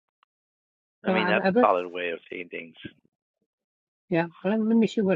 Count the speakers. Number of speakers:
2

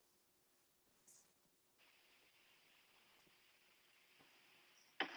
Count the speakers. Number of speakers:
0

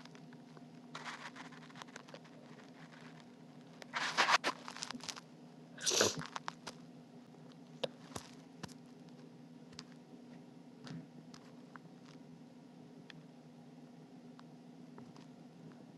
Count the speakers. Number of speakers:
0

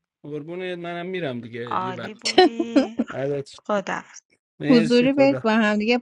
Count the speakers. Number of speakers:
3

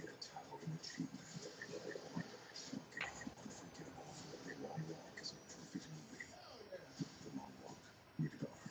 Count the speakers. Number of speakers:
0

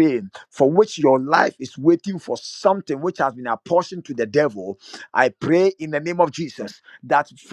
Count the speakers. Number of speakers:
1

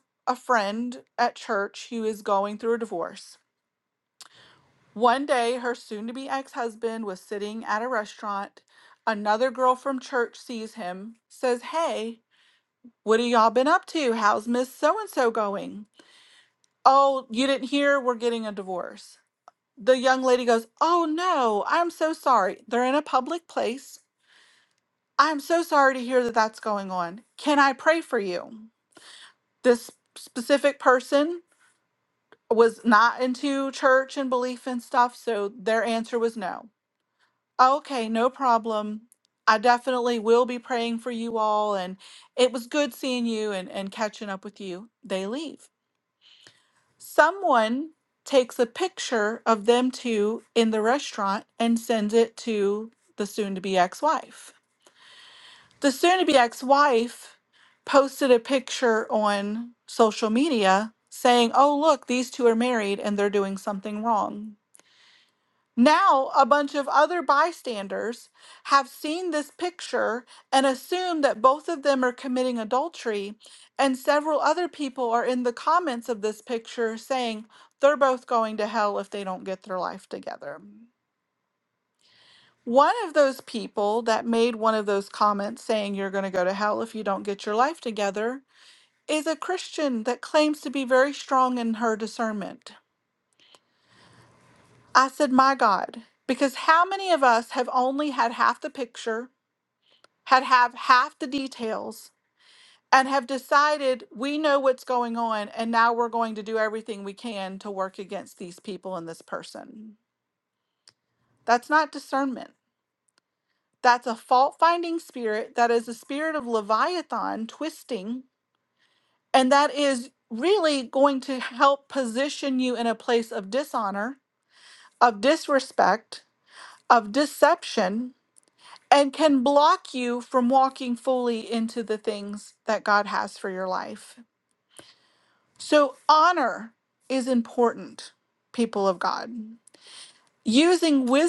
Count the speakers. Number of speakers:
1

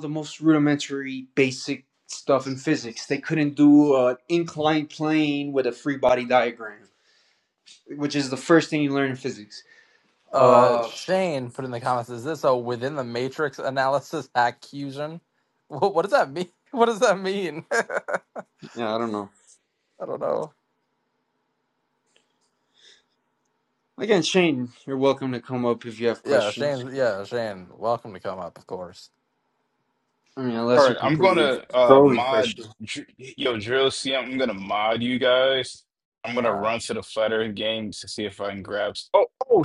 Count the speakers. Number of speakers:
3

